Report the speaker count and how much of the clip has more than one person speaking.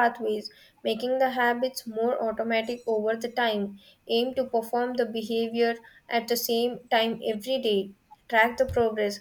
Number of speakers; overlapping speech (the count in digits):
1, no overlap